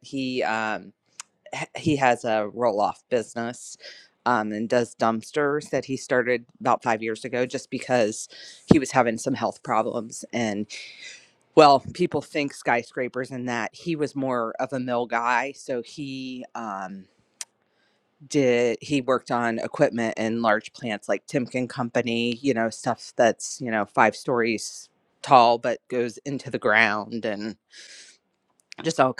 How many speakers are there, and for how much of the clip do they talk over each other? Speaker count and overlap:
one, no overlap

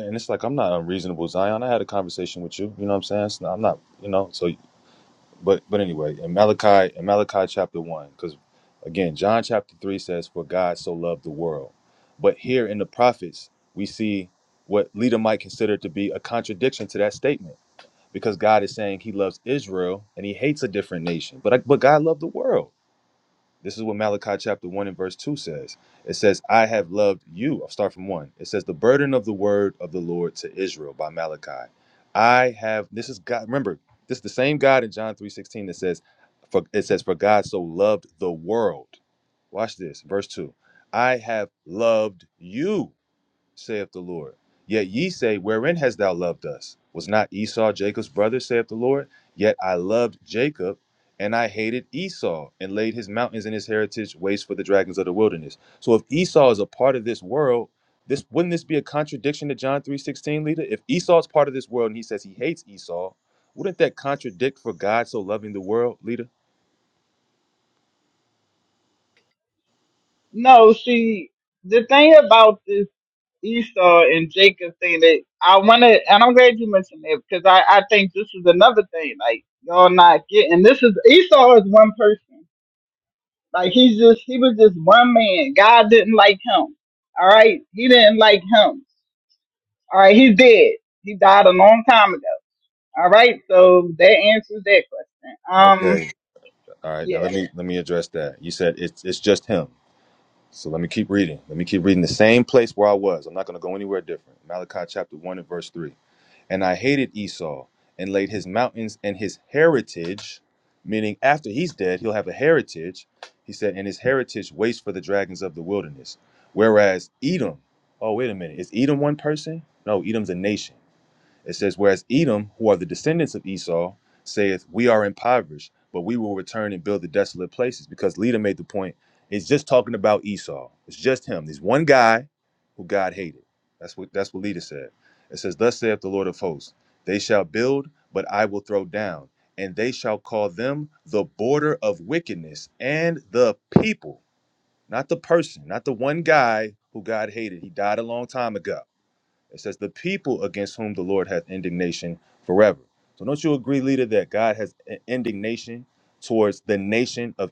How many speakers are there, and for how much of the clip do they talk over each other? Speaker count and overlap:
two, under 1%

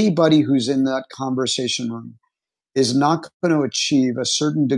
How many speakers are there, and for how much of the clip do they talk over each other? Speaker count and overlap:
one, no overlap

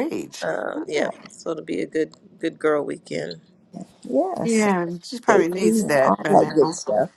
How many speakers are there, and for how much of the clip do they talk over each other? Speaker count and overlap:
three, about 28%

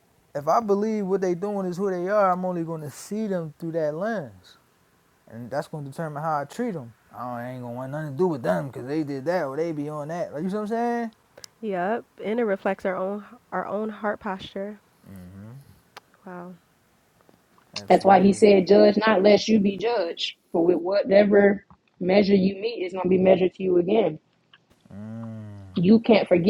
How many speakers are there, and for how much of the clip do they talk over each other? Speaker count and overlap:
three, about 2%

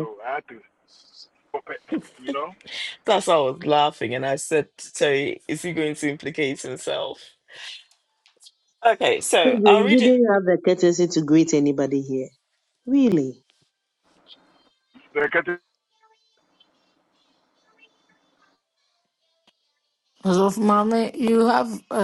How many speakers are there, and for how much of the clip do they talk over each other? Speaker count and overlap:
four, about 4%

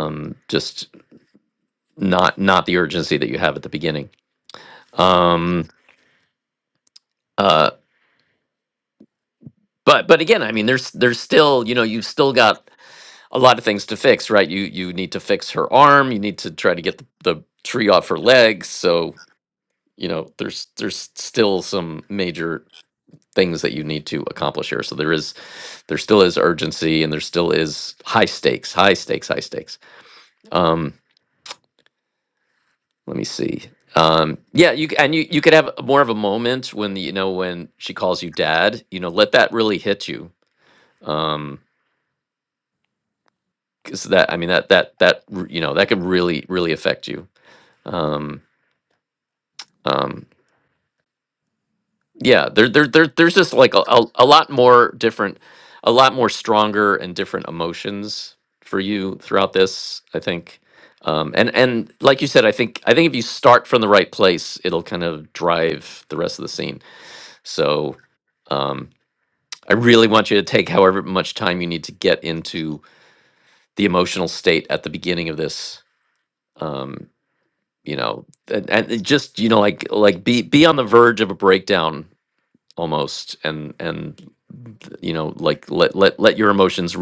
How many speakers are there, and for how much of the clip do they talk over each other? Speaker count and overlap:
one, no overlap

